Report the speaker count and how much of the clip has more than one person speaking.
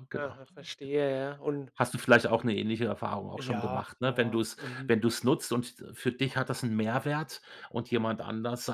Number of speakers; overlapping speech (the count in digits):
2, about 20%